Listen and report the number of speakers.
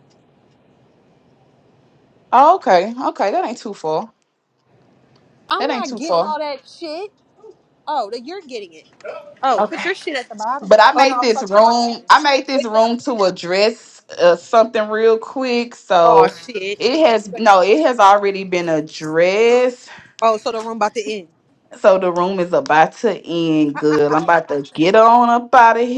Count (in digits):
2